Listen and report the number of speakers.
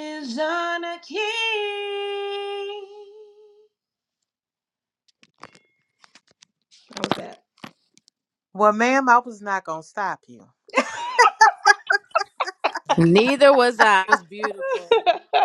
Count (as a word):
three